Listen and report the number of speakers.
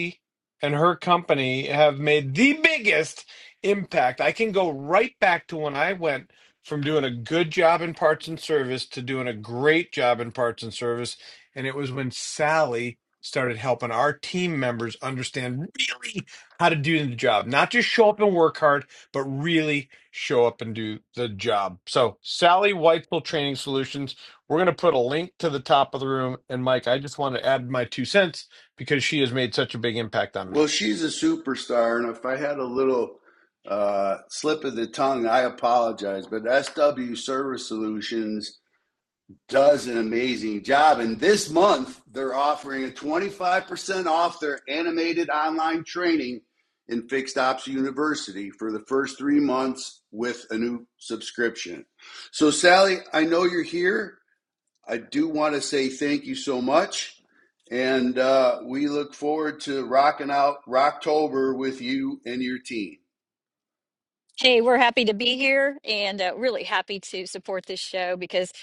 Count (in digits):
3